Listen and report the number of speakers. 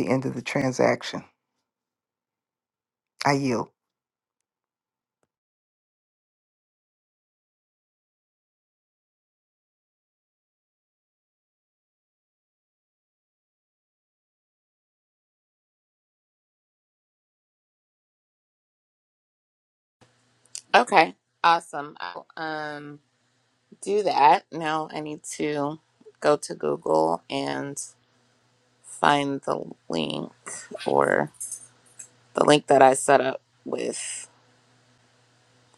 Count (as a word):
two